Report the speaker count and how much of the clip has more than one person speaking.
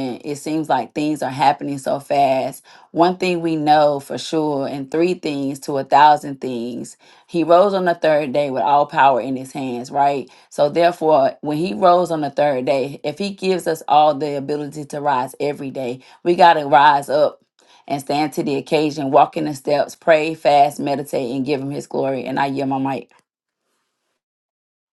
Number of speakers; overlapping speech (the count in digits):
1, no overlap